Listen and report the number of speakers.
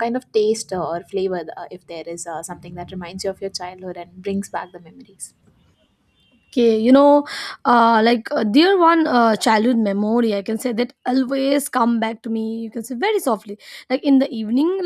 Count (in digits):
2